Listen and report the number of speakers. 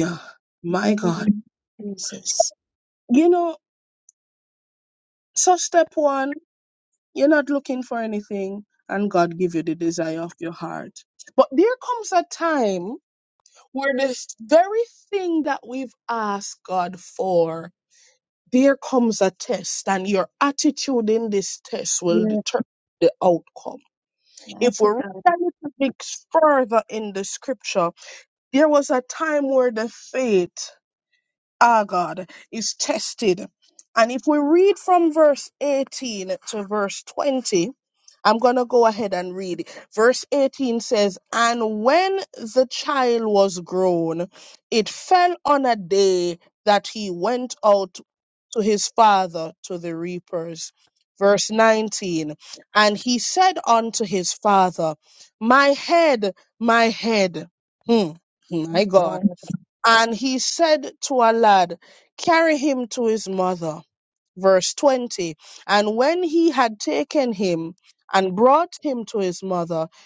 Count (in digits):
2